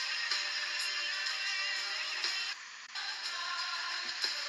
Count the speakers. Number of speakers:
zero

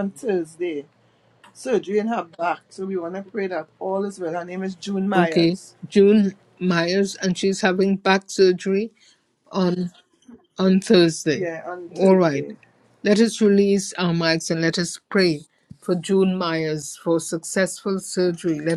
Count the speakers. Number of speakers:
two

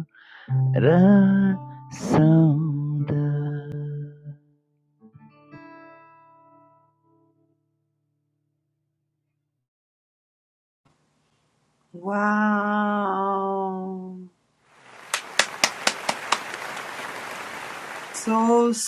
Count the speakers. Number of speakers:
two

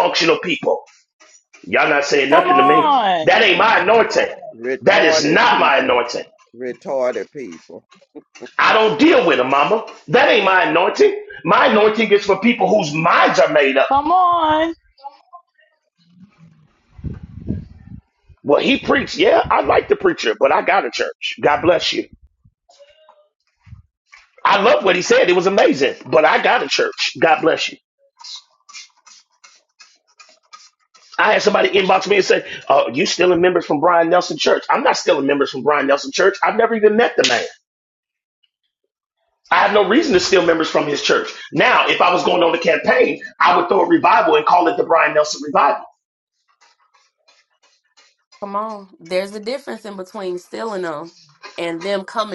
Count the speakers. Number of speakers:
four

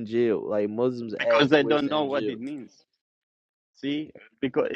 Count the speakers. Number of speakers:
two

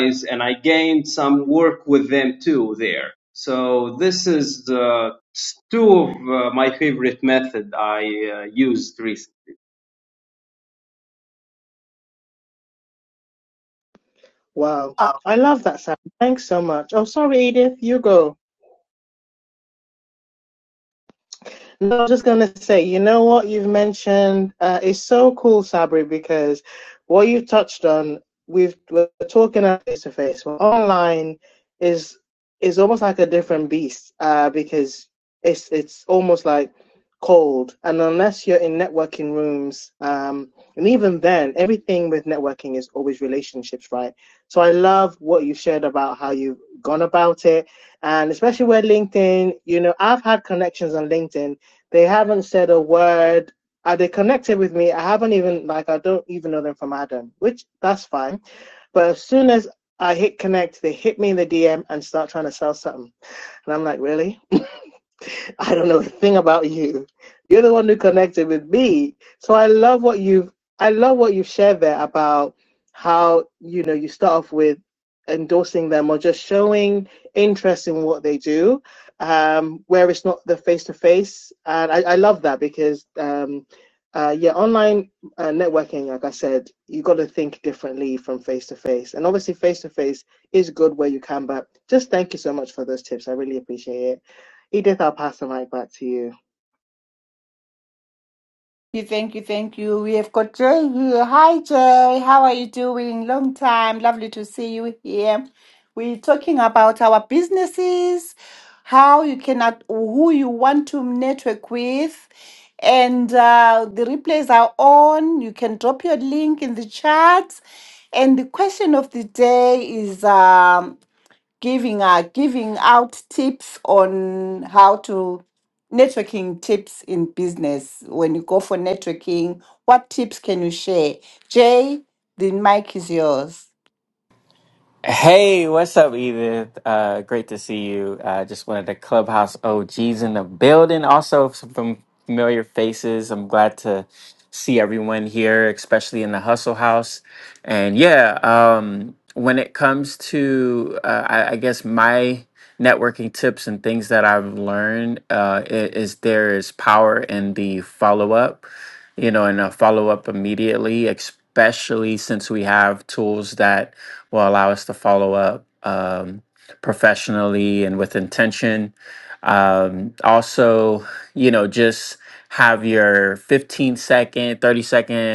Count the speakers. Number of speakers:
four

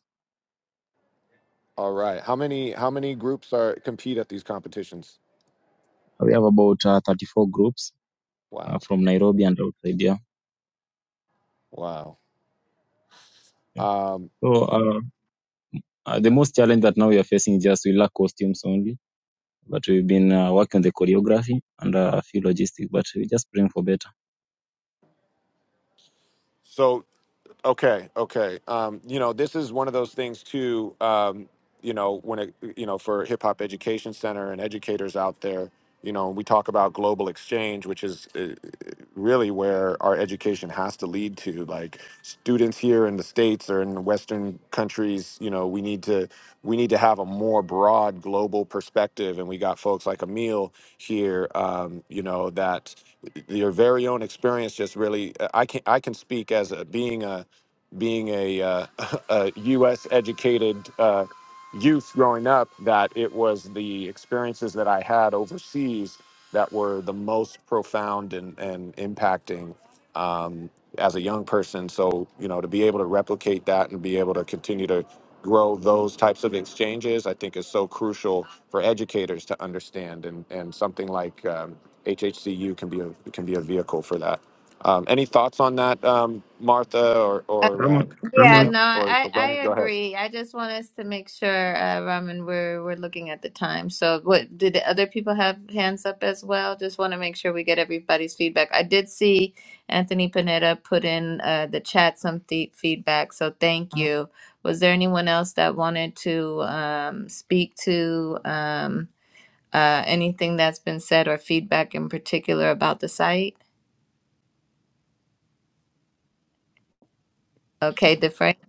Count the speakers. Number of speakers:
three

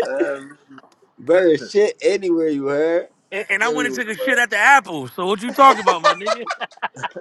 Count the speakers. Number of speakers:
three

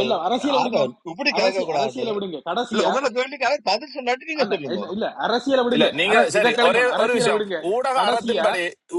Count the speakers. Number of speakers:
three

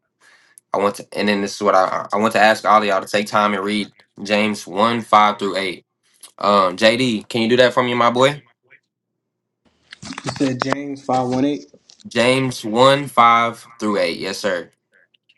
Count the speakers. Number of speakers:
two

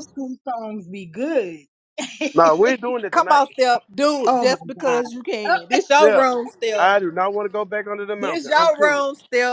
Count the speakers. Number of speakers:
three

